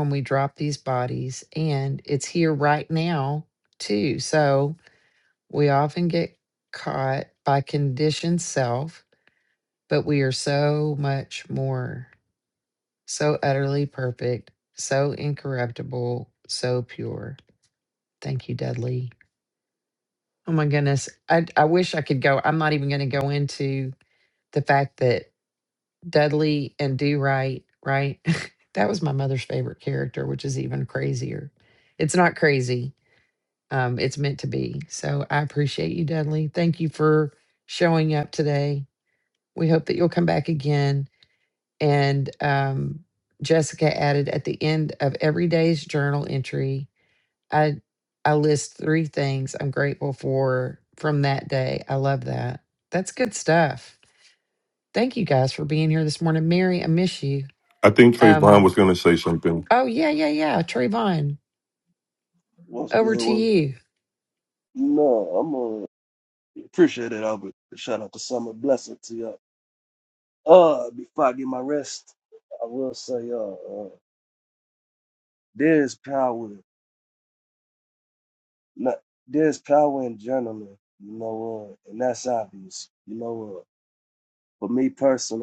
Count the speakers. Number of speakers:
3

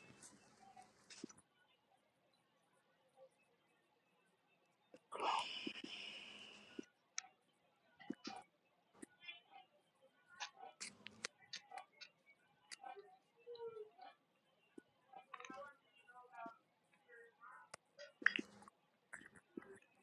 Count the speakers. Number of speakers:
0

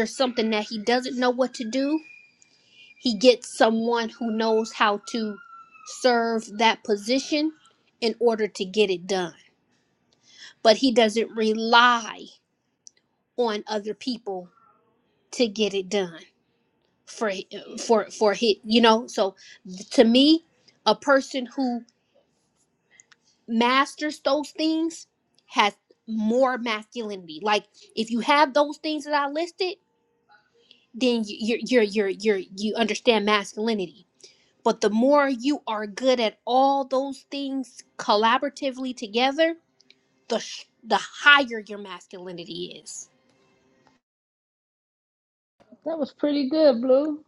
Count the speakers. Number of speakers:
2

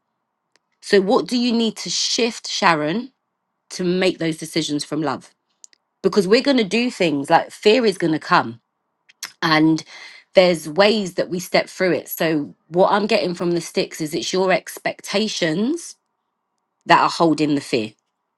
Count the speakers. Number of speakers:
1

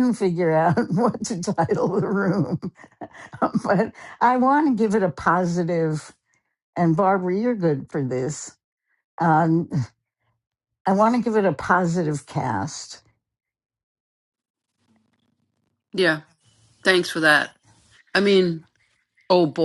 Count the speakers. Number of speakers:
2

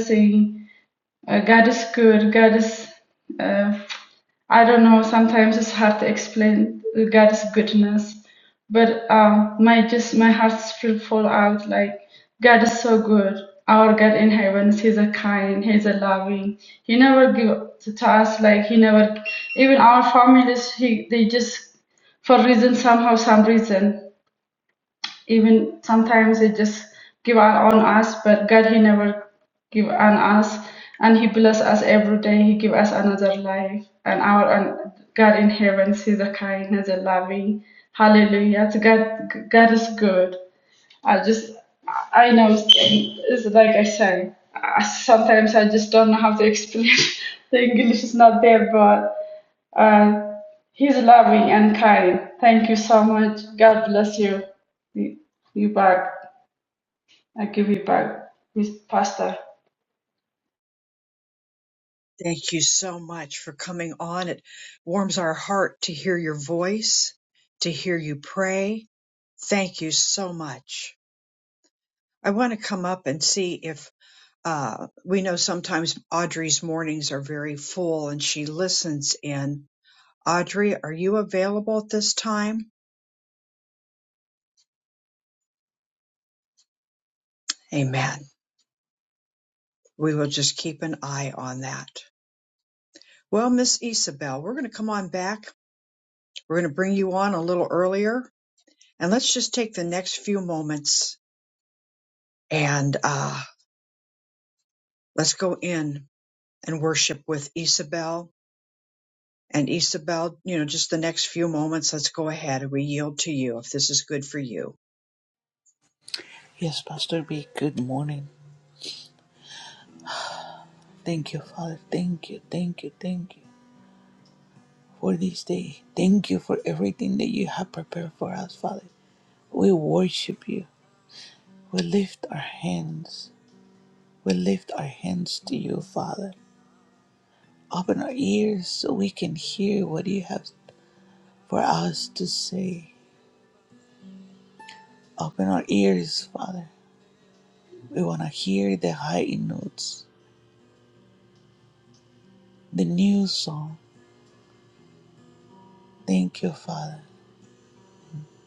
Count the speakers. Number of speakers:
3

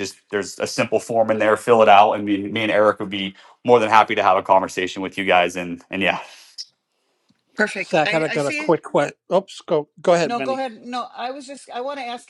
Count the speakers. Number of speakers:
3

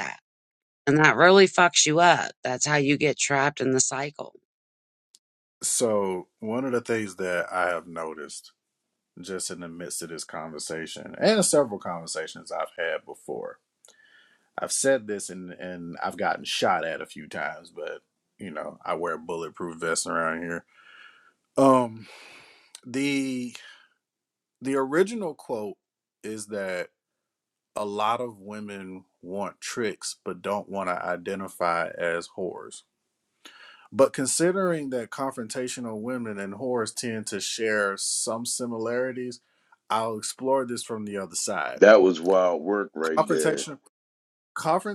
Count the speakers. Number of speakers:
3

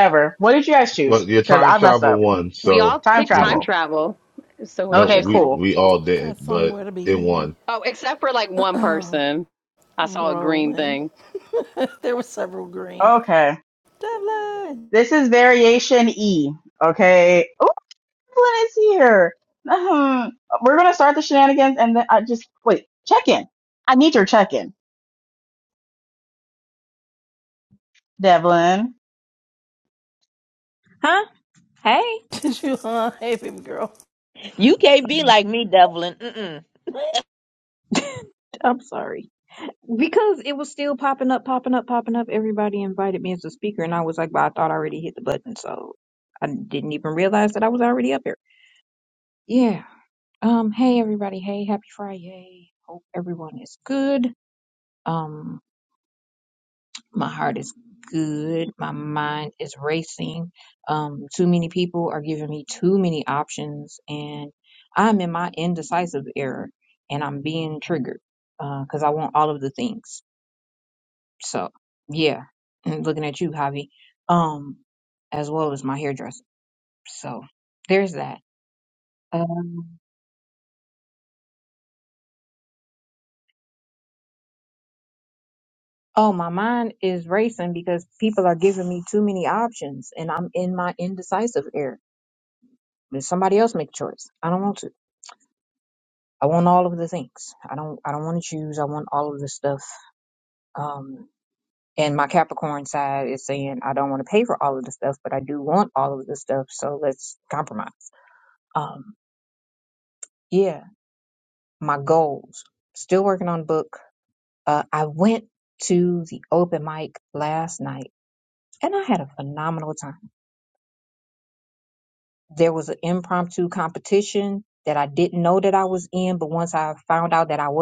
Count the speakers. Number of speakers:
6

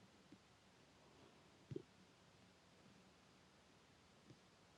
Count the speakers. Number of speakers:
0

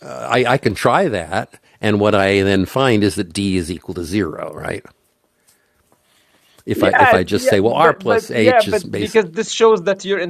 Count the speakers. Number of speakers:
2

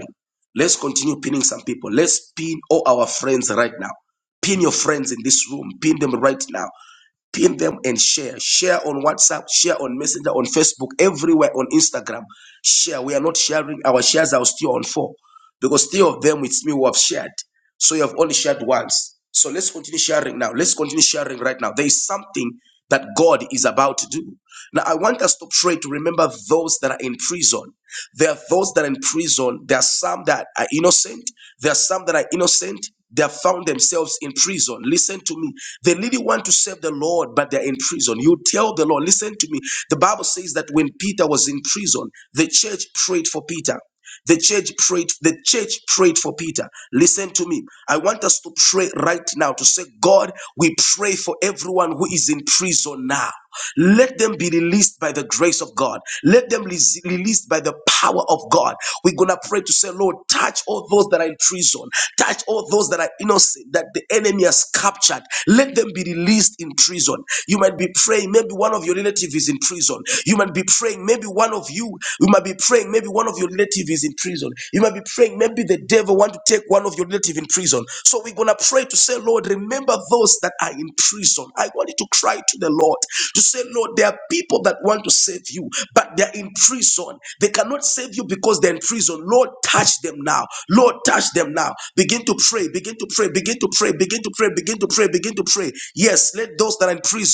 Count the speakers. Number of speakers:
1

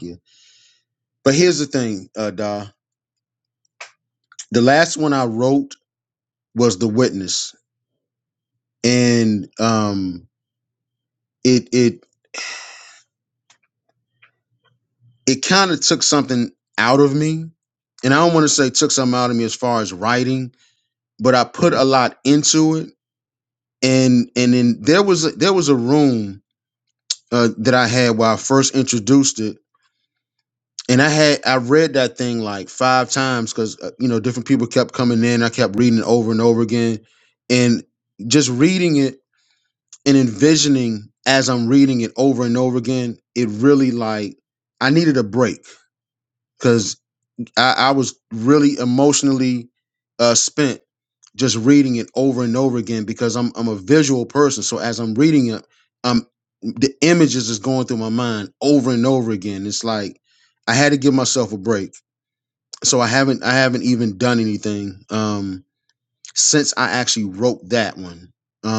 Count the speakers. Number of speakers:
1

